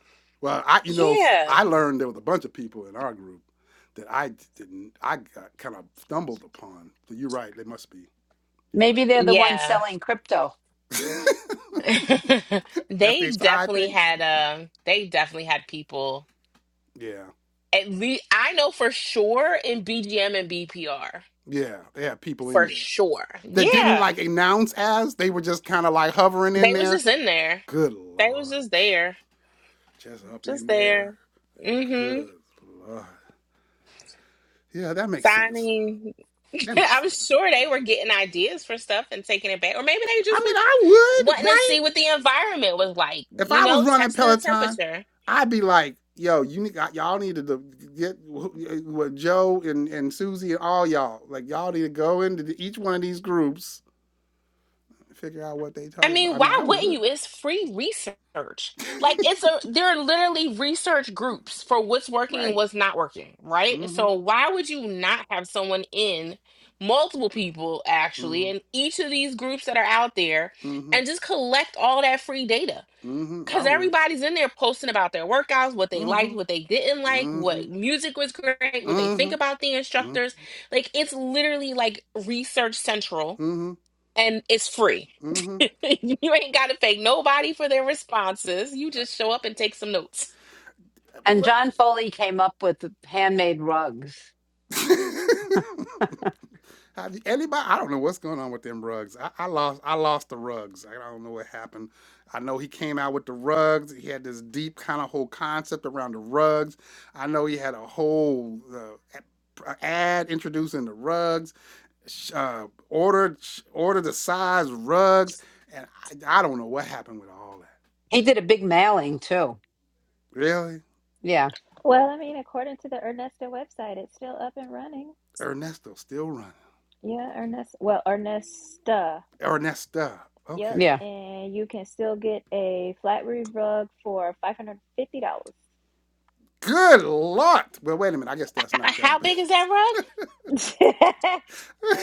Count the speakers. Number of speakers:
4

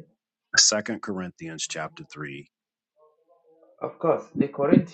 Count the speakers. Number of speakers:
2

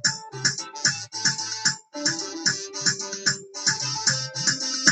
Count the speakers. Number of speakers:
0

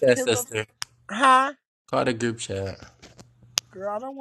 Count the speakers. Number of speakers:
2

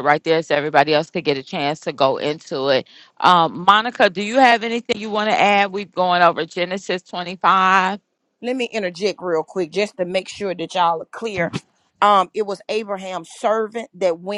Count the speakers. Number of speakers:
2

